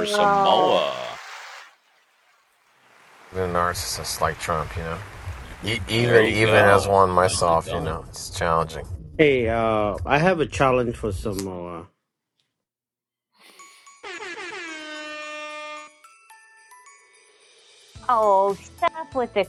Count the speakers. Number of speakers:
four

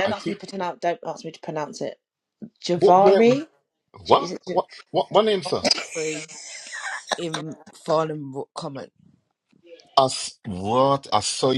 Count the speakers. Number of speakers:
three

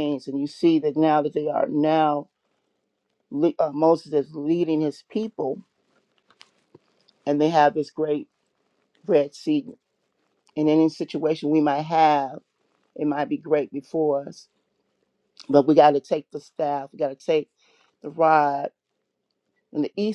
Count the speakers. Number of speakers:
one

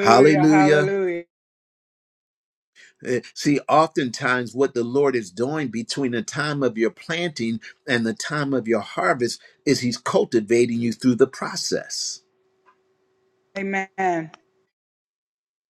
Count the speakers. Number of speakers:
two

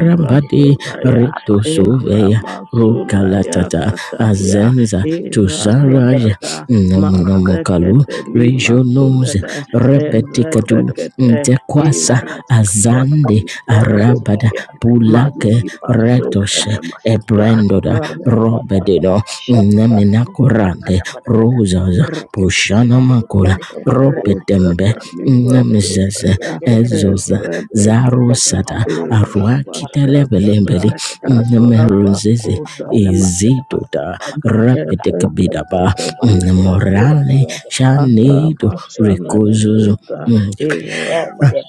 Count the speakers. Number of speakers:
three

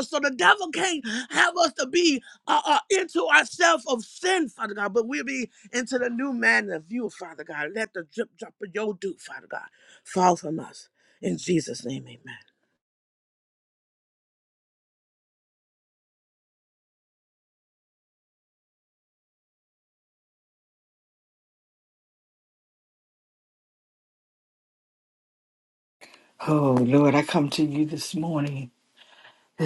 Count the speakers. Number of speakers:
two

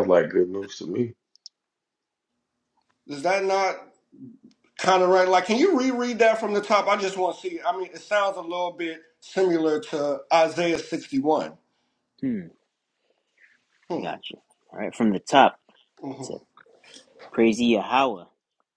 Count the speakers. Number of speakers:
three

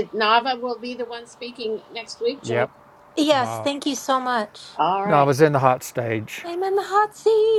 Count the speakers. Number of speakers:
three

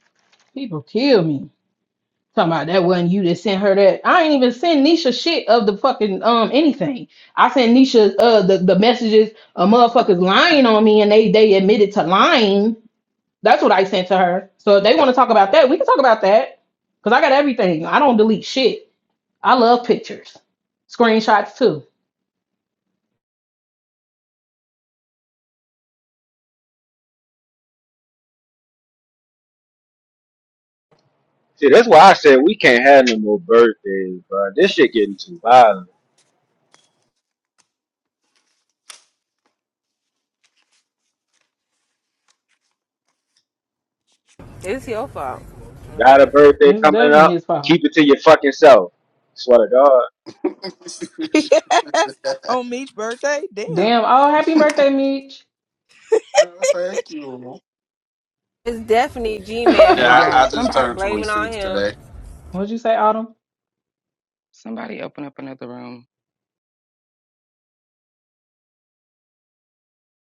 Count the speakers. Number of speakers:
six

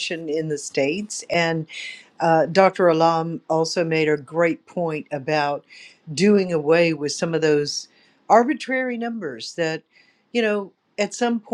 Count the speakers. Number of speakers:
one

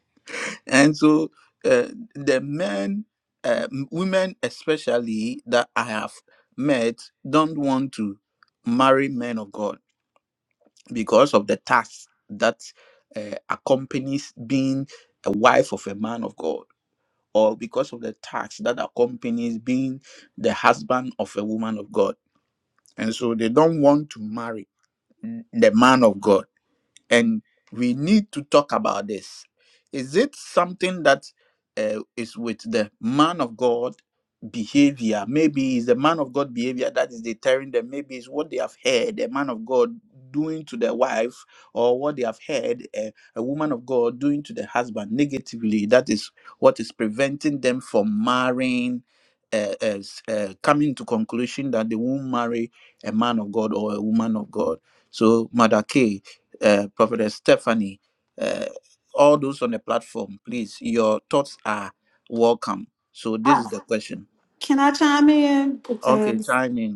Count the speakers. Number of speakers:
two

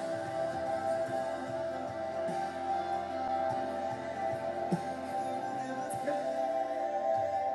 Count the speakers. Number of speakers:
zero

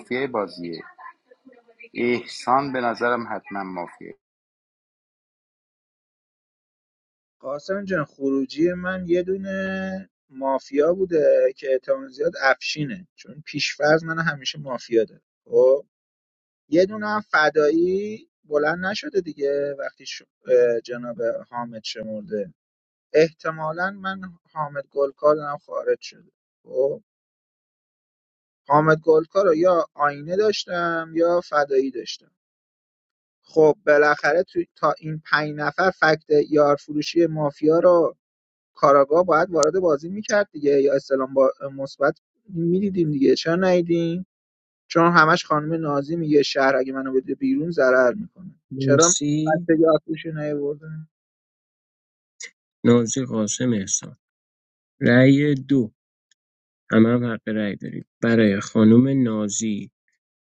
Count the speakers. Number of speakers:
three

